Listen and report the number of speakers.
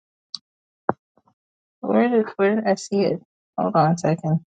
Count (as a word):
one